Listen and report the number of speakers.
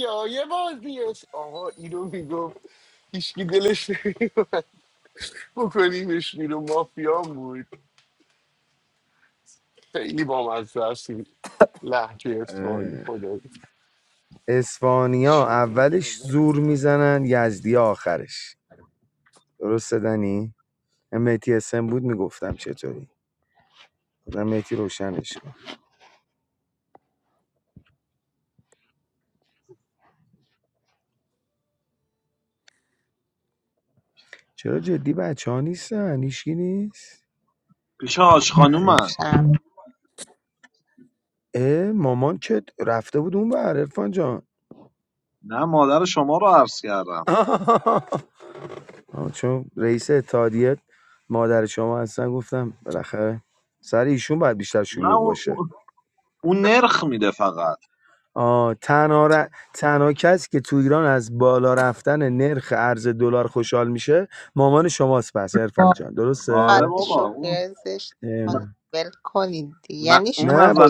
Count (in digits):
4